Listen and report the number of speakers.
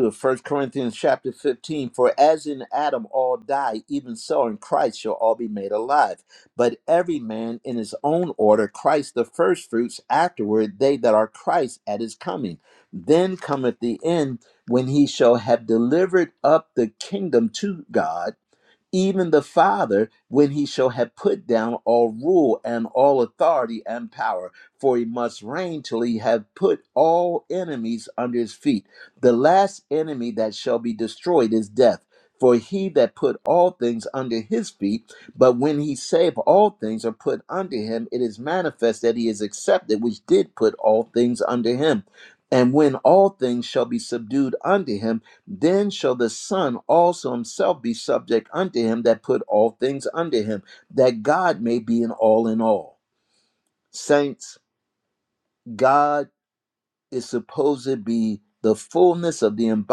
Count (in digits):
1